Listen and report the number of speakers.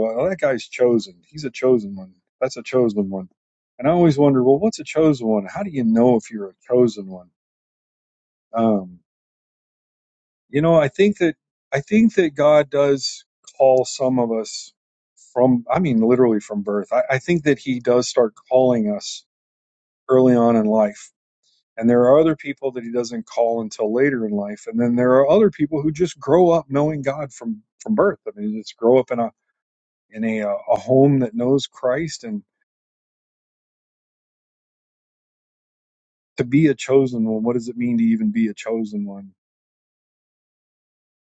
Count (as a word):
one